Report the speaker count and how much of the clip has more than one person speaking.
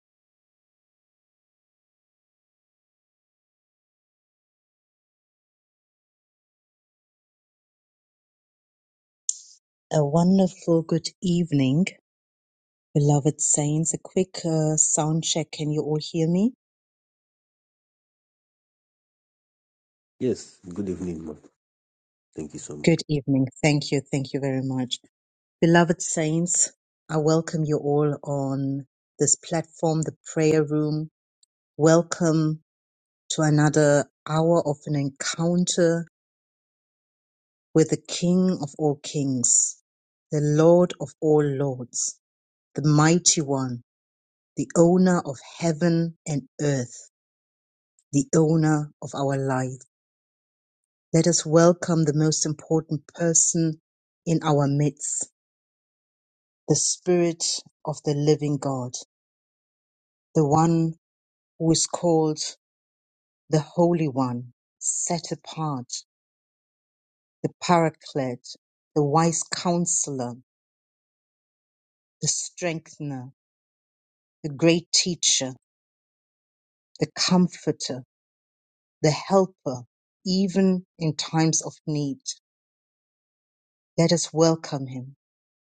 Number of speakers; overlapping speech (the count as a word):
two, under 1%